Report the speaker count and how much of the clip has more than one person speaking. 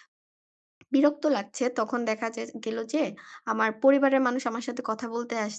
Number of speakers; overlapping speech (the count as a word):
one, no overlap